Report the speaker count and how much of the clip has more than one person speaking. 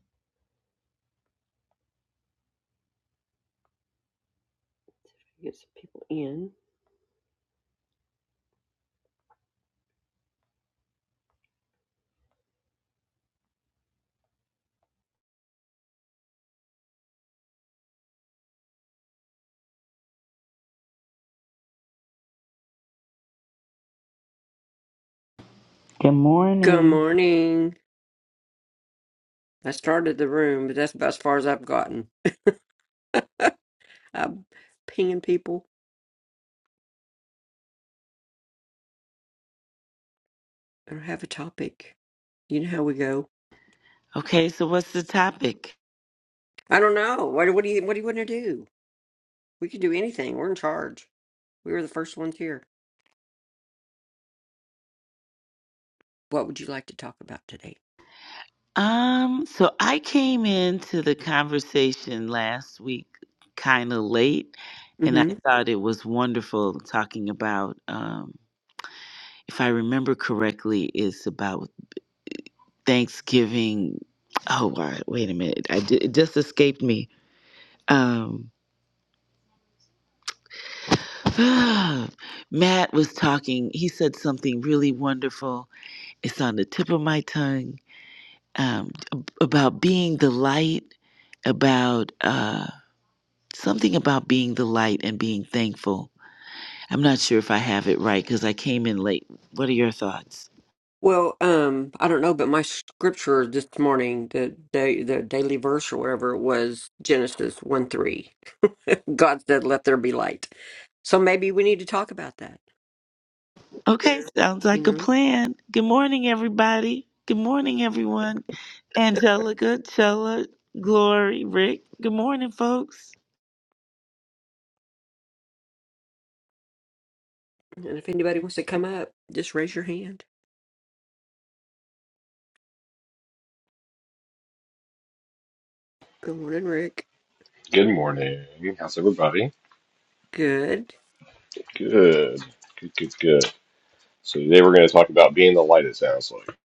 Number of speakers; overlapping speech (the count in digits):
3, about 1%